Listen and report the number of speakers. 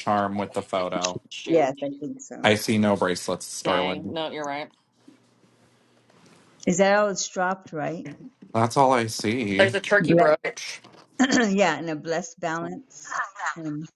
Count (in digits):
3